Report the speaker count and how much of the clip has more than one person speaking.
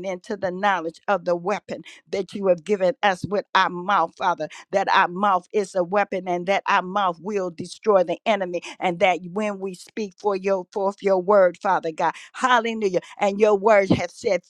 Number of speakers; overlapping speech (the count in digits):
1, no overlap